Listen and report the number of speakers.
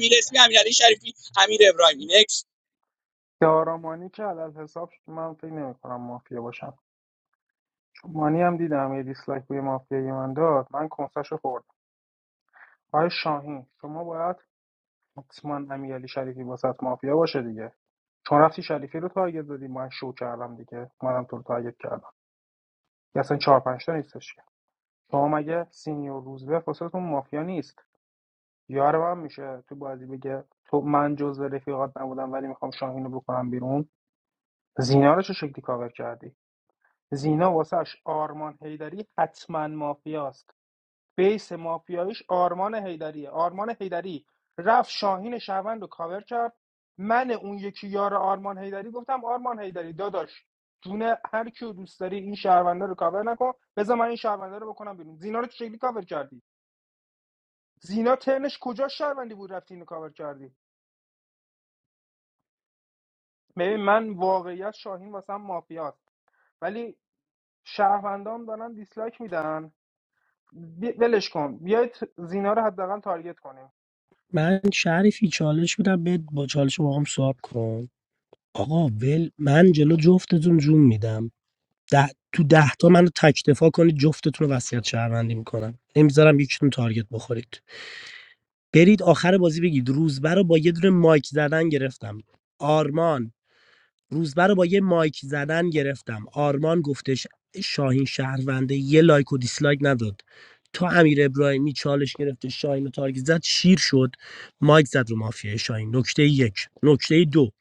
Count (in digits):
3